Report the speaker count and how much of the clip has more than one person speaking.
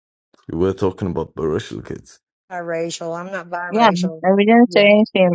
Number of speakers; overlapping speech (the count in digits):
3, about 15%